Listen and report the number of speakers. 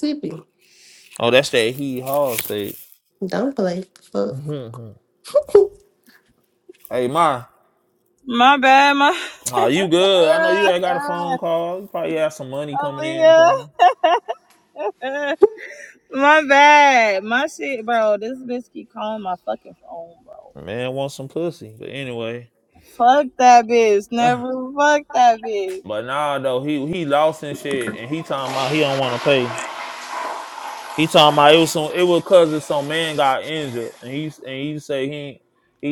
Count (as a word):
three